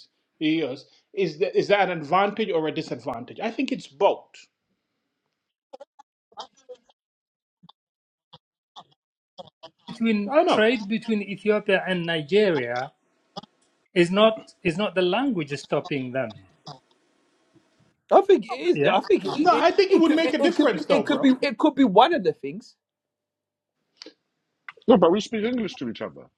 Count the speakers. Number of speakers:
4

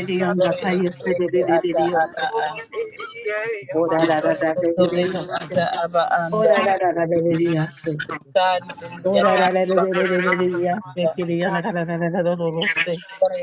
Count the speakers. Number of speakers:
3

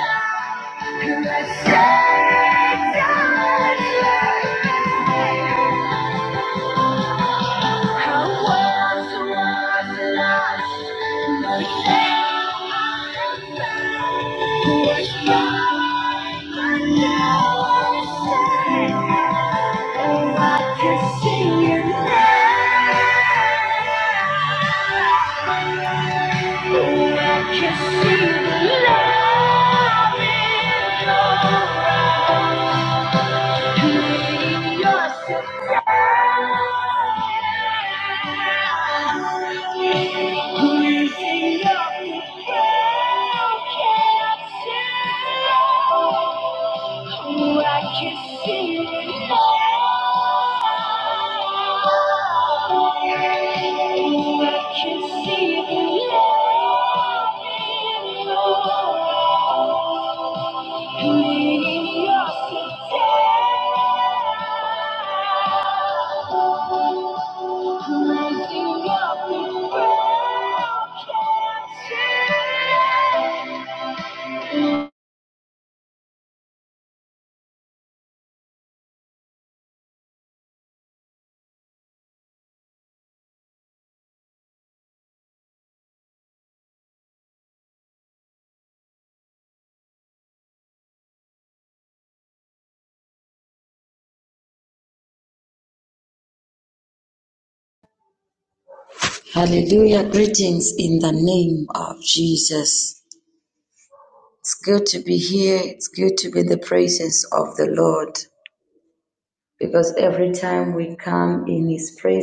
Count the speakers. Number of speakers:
2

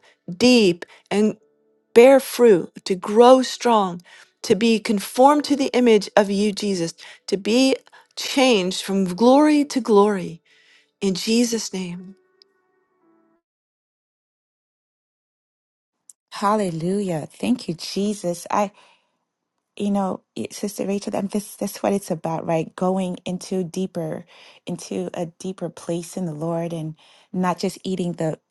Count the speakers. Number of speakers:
2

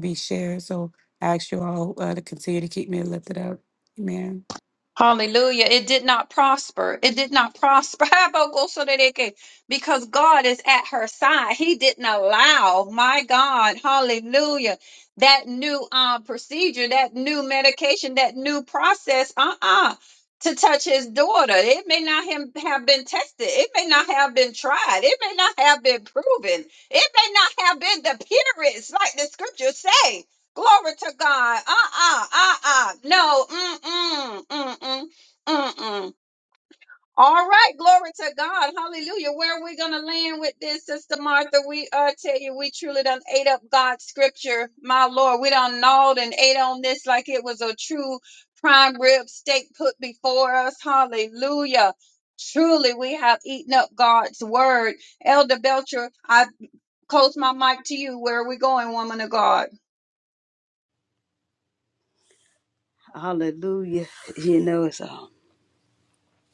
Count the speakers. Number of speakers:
3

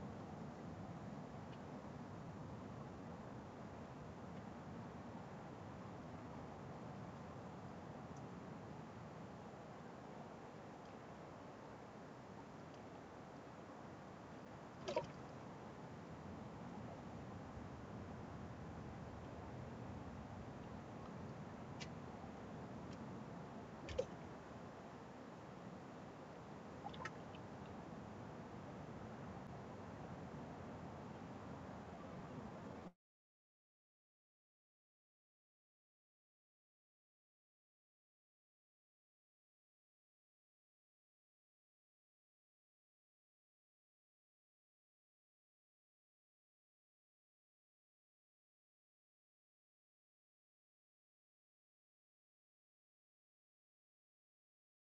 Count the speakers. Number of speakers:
0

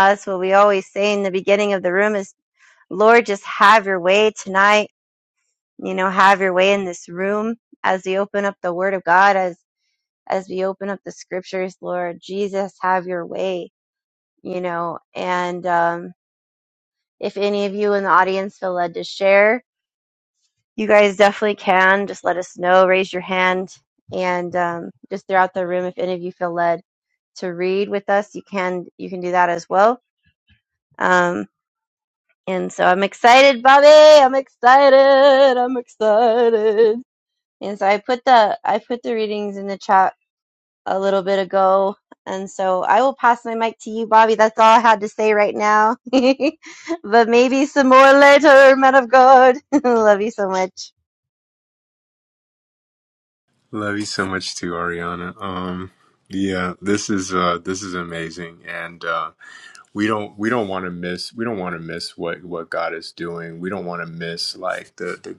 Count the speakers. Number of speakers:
2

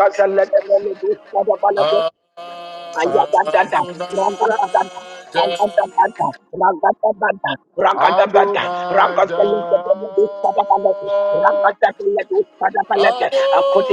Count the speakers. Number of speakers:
2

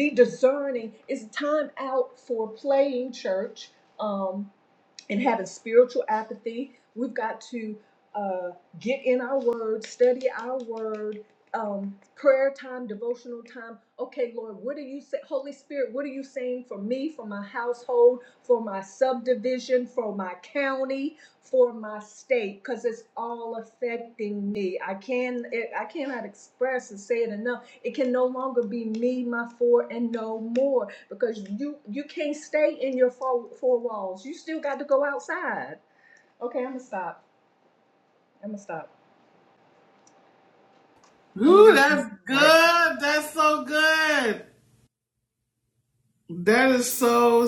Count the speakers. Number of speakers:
2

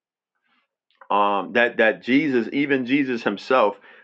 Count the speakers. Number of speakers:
1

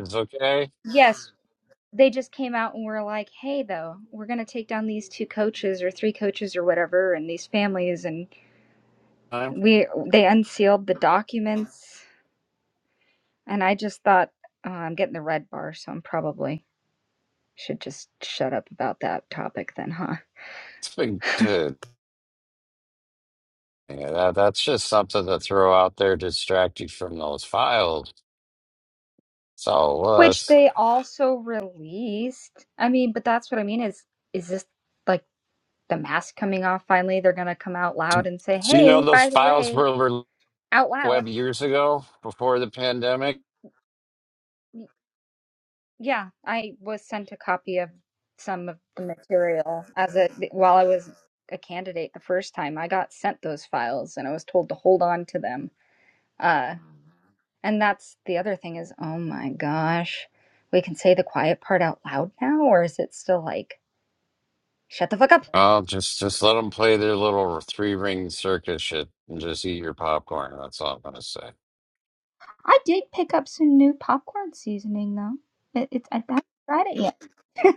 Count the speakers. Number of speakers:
2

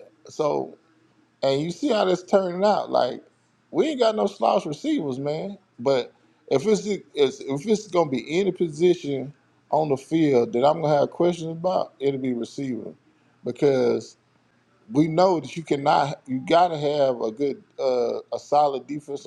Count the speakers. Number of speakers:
1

